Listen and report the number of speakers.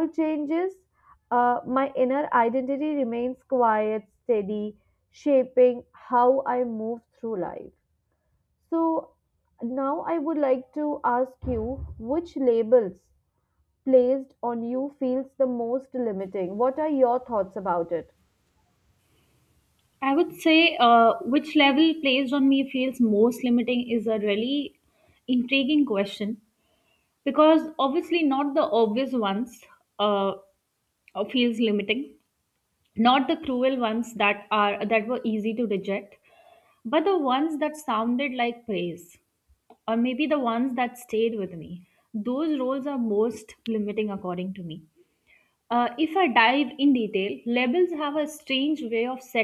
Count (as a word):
two